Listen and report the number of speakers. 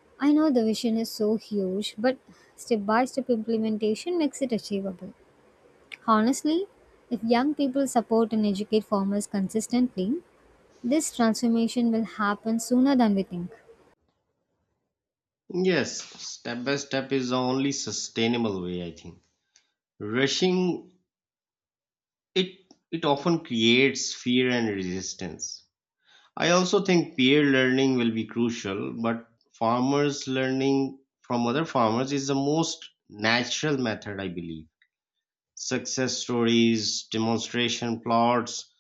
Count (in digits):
2